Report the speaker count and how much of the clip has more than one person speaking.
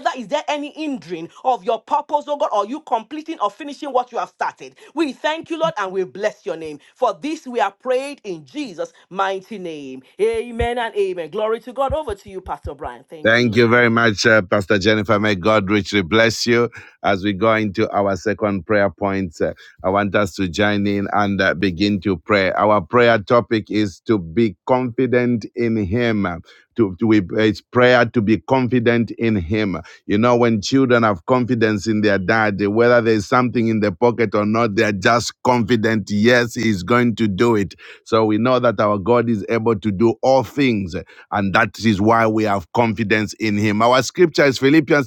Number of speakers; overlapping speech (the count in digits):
2, about 1%